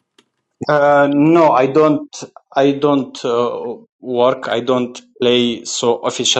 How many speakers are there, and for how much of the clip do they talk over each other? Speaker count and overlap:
1, no overlap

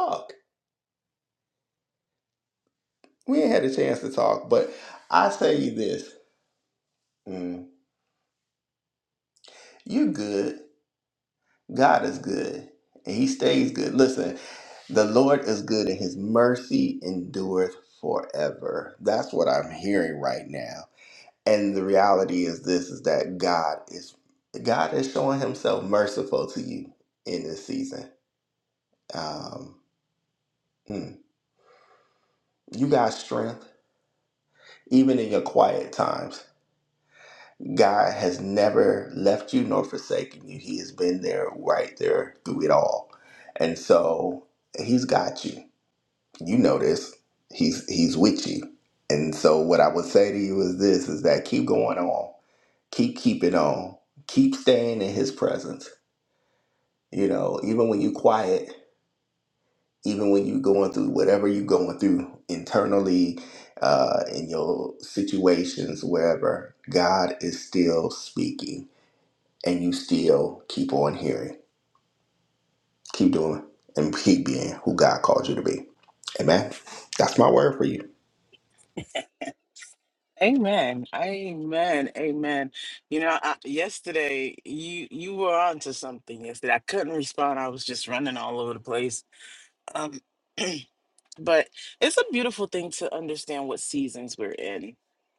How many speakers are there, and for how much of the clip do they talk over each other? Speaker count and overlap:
2, no overlap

